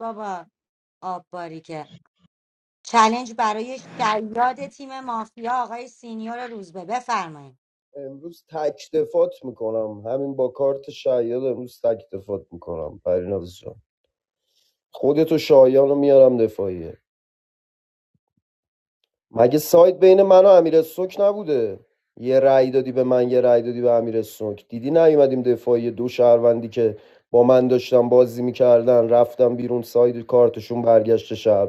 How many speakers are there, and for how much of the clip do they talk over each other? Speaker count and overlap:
two, no overlap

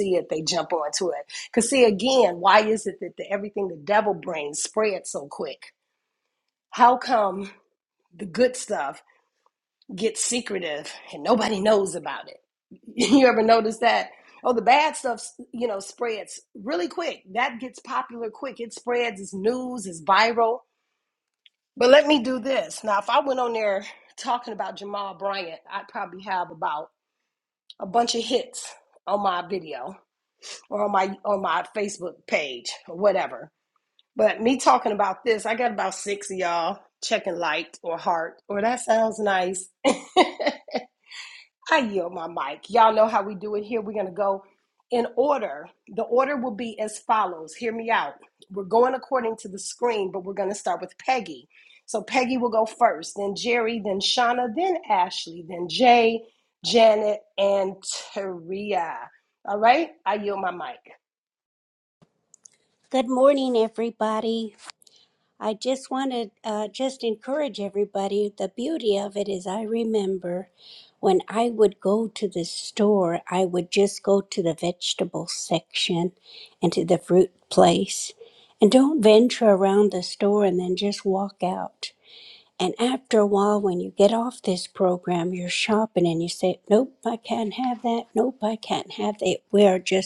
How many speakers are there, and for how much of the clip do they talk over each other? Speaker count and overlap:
two, no overlap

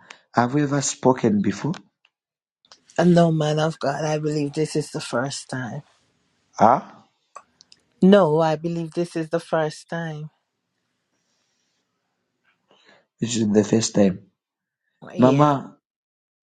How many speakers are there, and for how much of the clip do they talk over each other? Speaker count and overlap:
two, about 2%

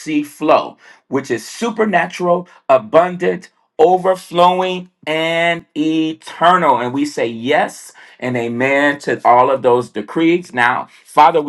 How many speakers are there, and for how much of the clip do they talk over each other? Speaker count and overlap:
one, no overlap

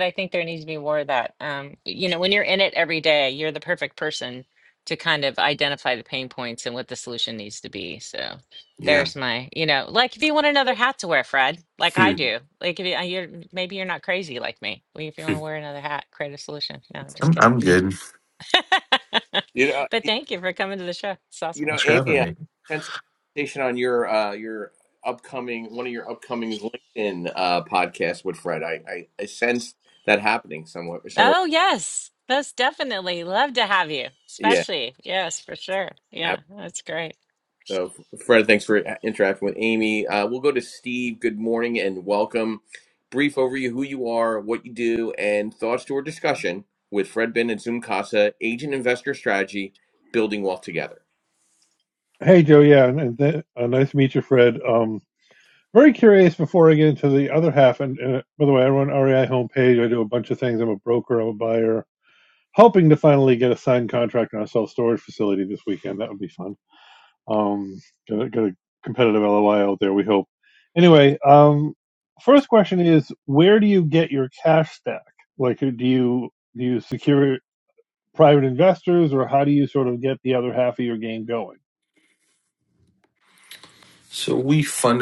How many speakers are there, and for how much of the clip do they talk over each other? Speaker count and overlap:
four, about 2%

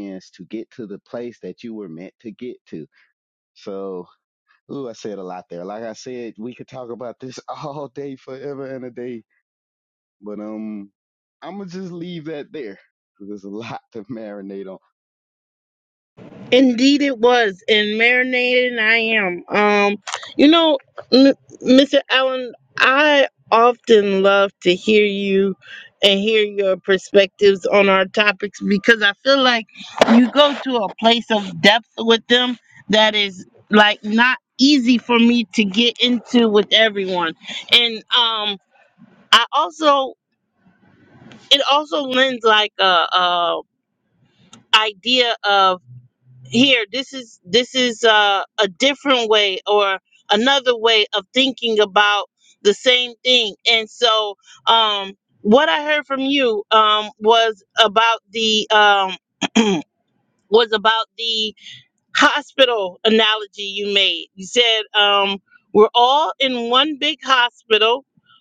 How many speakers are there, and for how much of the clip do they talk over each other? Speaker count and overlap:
two, no overlap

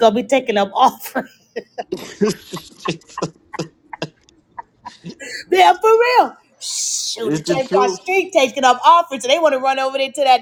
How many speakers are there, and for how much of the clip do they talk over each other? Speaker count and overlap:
two, about 7%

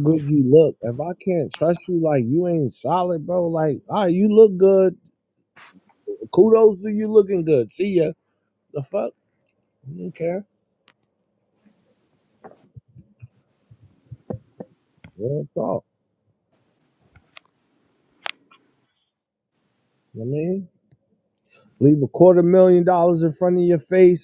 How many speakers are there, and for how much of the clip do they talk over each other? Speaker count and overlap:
one, no overlap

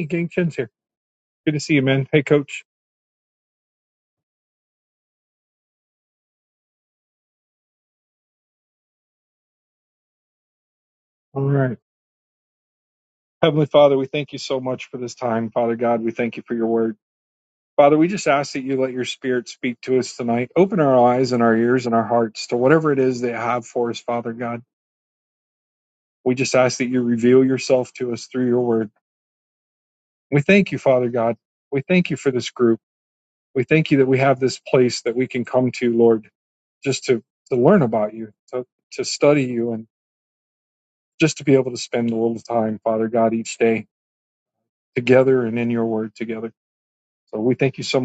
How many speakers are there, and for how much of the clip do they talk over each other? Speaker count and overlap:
one, no overlap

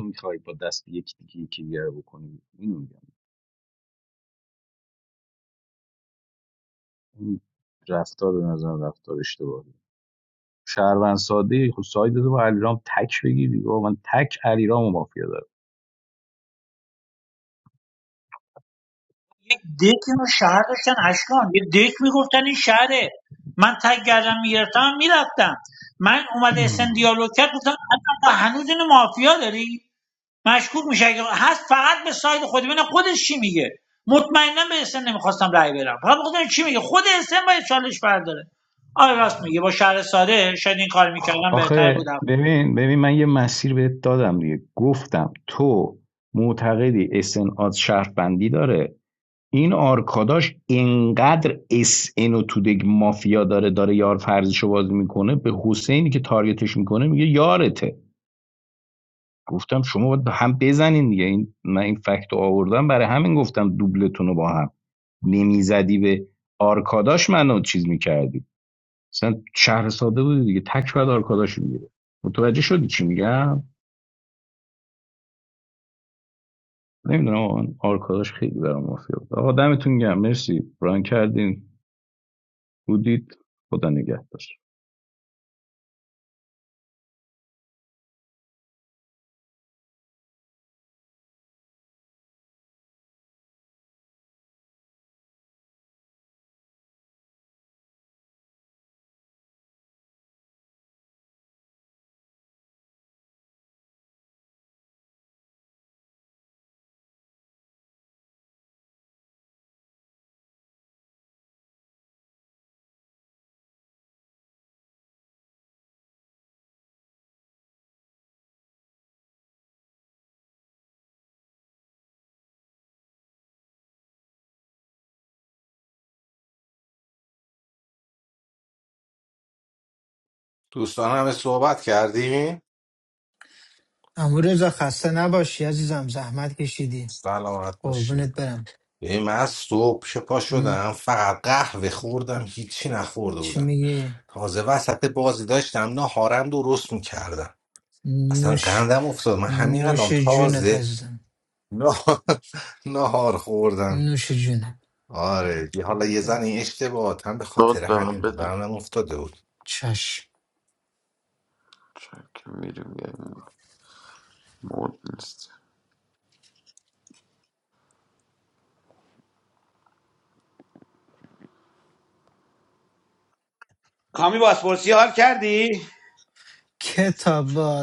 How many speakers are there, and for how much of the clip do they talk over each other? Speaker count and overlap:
six, about 3%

